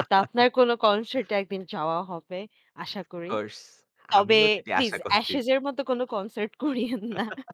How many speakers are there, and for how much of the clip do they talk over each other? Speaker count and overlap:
2, about 14%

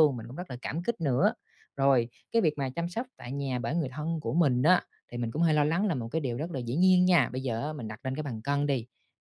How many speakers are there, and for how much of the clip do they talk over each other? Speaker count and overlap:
1, no overlap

